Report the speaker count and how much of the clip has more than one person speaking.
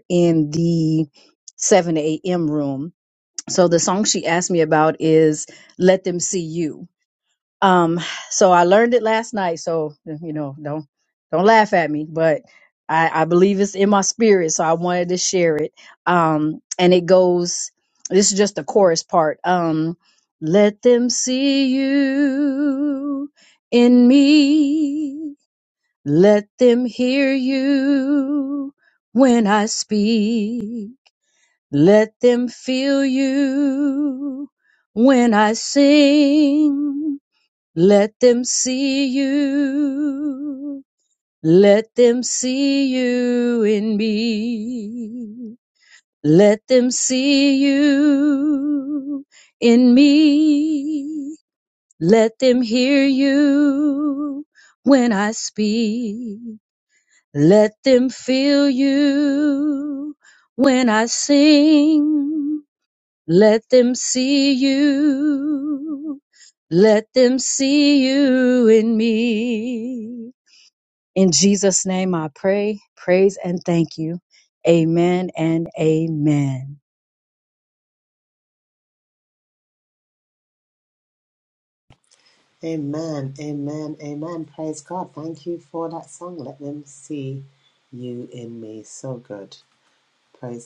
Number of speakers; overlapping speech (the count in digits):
2, no overlap